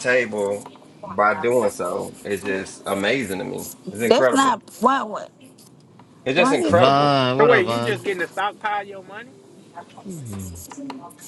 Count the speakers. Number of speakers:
4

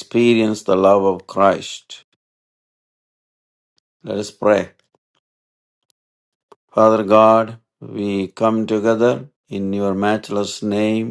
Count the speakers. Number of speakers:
1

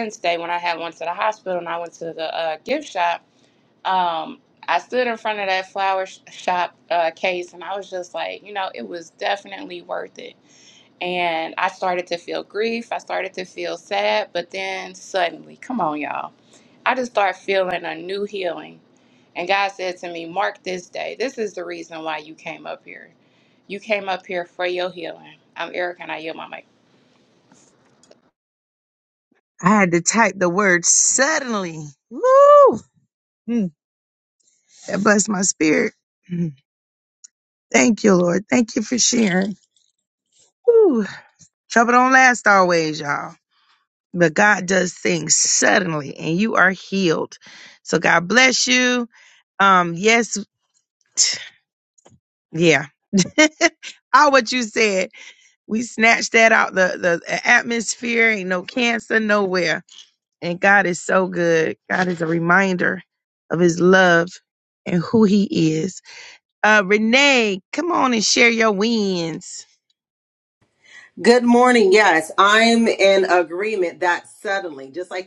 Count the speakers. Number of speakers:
3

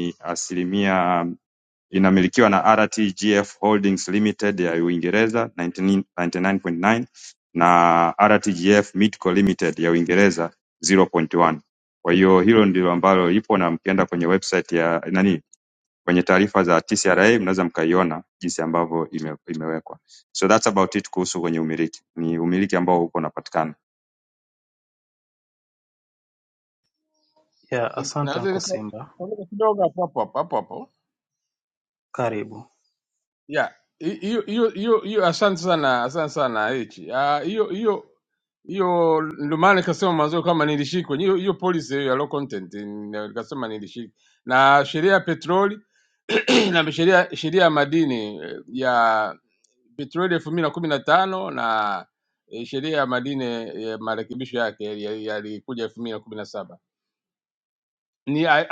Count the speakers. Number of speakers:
3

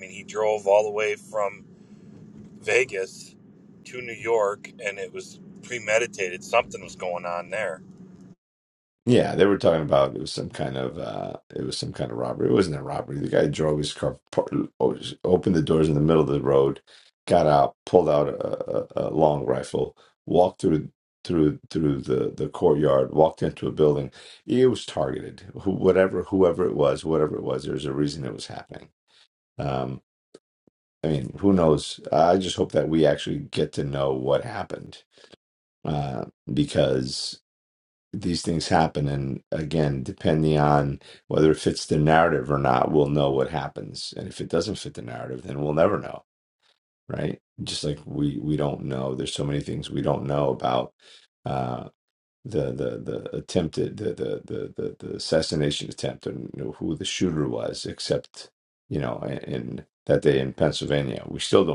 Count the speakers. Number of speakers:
2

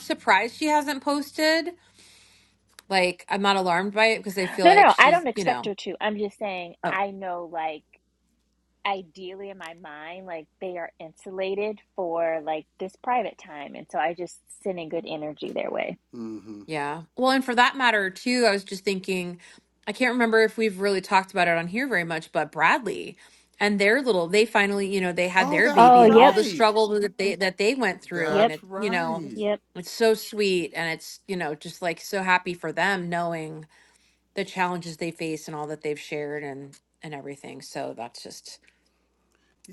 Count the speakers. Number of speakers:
3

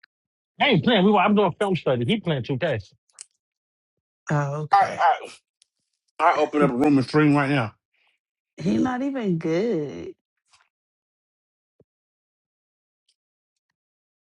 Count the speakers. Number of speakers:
3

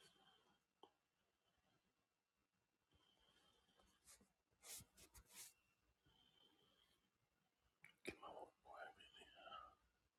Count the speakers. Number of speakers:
0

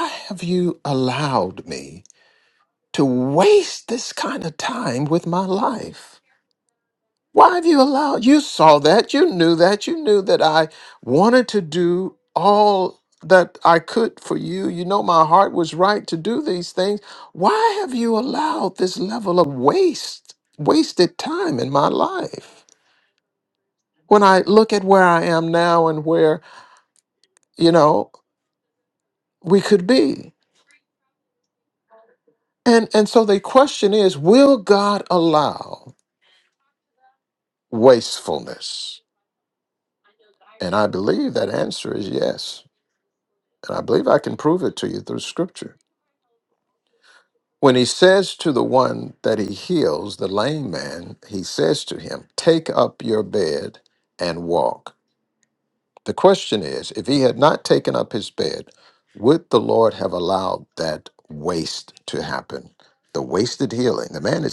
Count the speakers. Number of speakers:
1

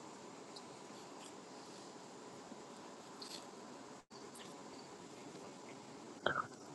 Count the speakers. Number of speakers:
0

